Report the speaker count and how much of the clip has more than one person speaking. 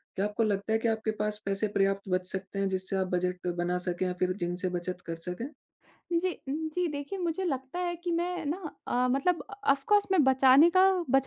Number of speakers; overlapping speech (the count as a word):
two, no overlap